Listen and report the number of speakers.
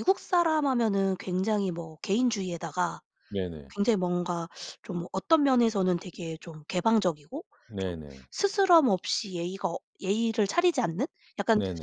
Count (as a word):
two